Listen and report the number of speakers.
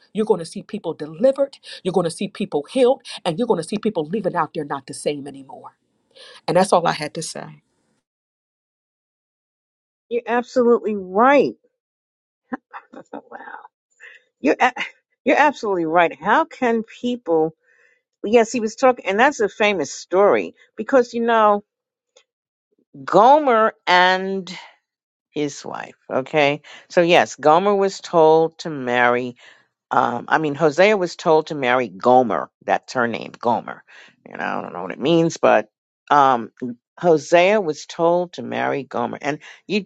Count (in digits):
2